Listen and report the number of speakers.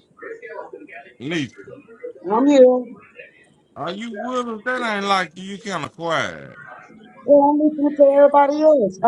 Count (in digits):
2